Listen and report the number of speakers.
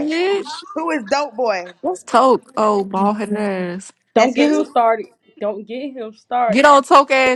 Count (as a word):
three